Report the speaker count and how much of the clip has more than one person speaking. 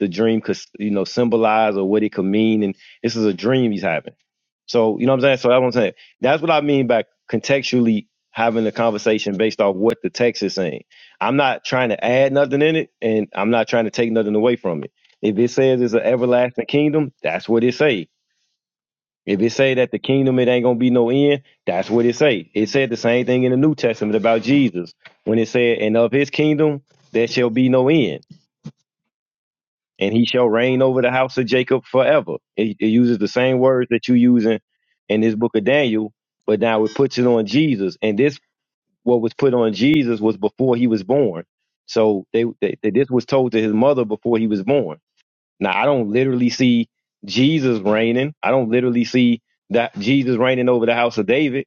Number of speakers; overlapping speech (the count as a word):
one, no overlap